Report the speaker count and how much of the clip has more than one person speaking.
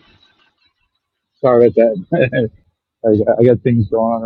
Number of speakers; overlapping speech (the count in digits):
1, no overlap